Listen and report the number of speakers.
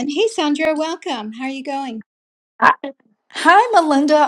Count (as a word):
two